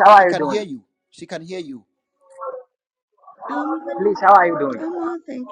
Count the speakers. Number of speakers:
3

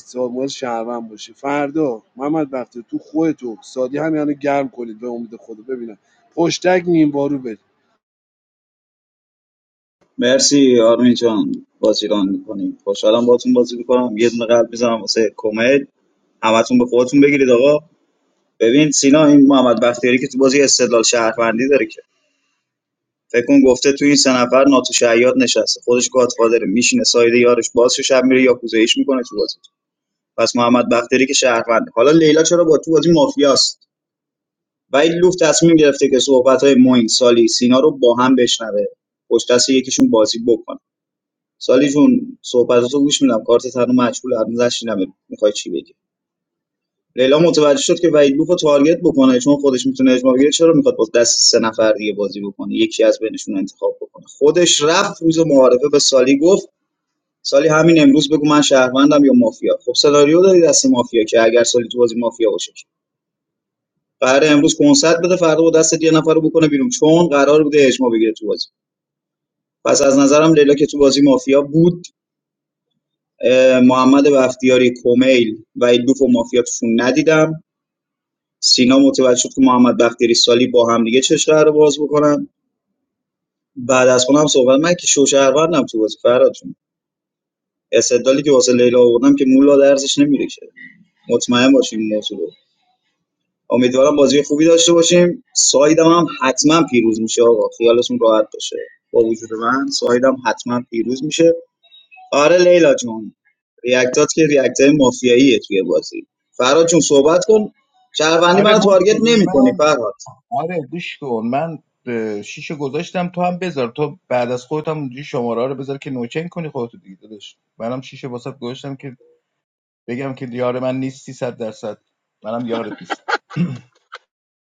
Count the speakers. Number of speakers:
3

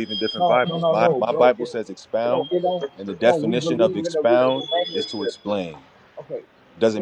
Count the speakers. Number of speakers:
2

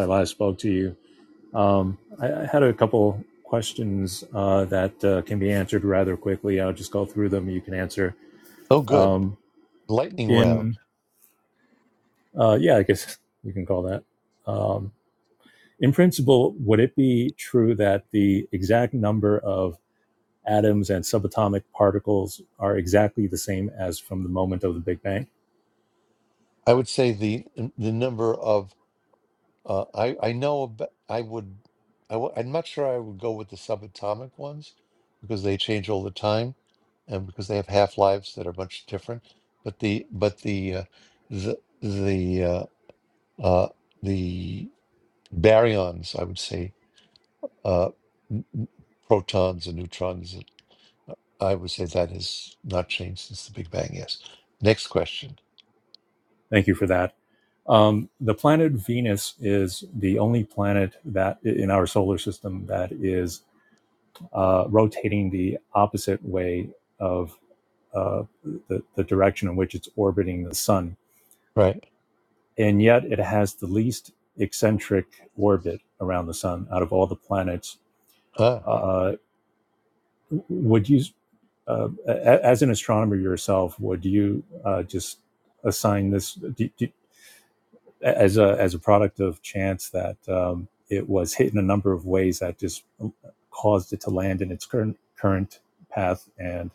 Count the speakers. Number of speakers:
2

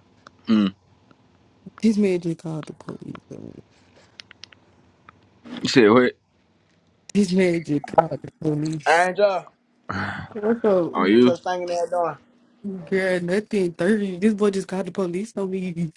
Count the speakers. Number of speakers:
3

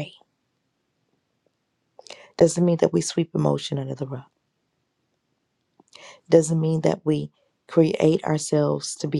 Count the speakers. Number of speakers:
1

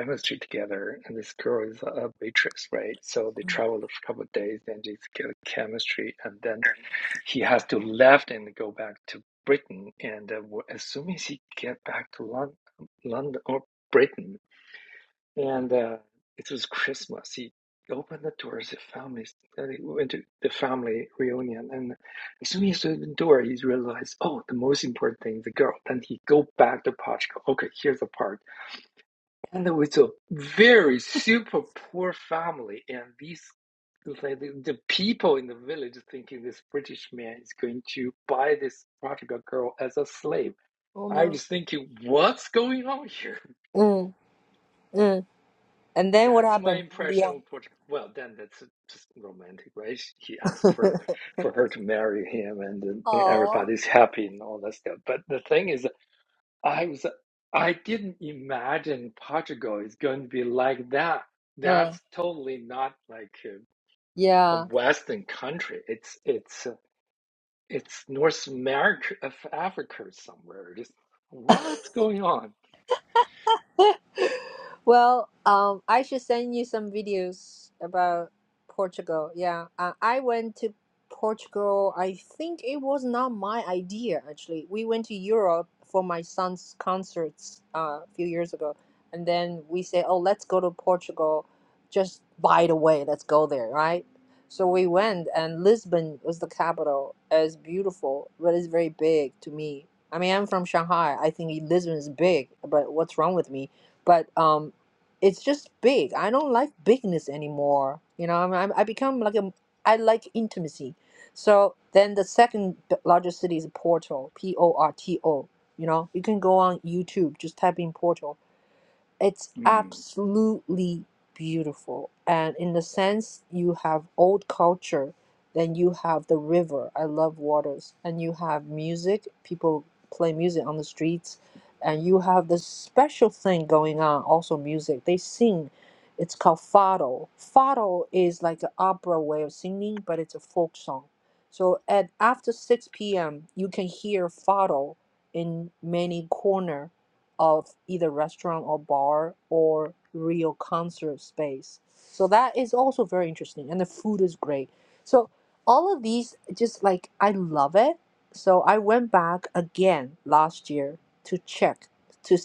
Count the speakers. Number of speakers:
2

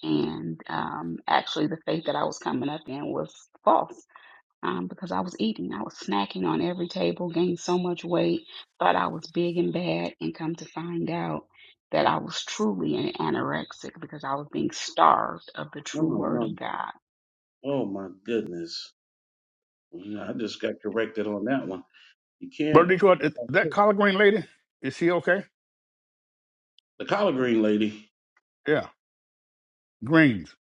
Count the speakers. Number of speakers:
3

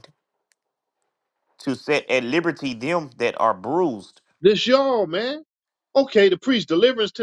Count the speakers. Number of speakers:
2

